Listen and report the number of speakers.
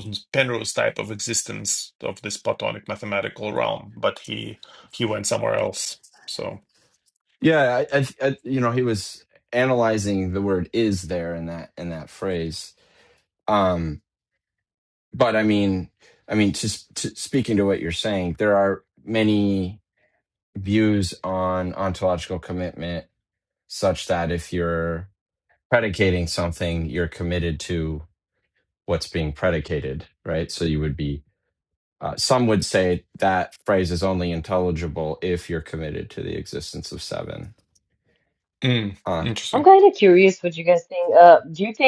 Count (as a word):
three